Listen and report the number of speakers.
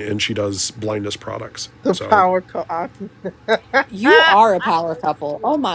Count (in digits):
3